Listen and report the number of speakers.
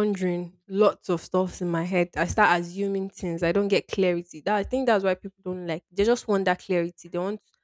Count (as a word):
one